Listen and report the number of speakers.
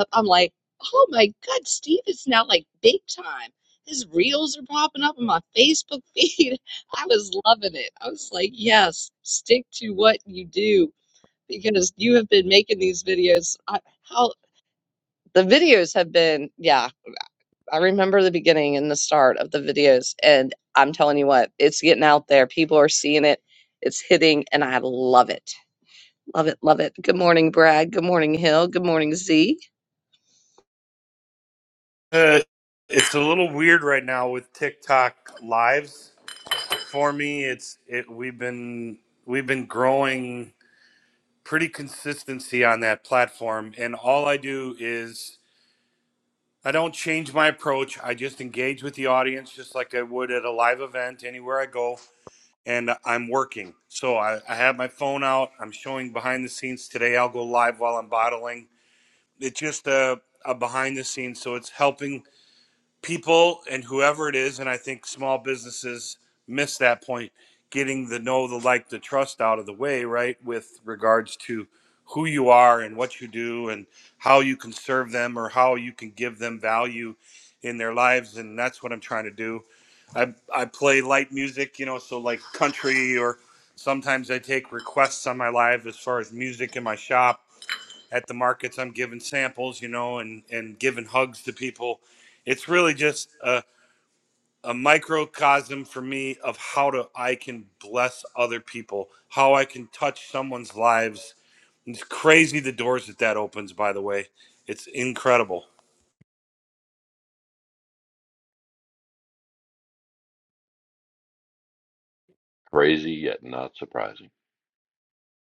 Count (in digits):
3